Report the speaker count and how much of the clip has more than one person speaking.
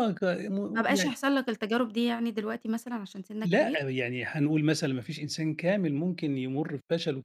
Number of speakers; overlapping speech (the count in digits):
2, about 7%